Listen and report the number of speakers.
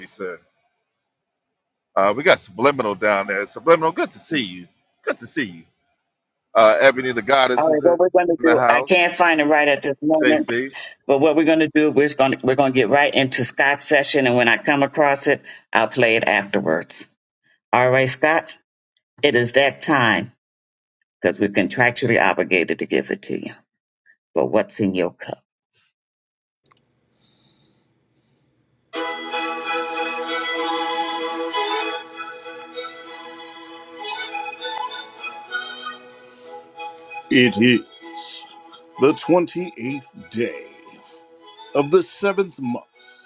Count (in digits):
3